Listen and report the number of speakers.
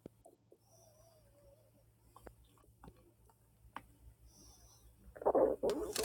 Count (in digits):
0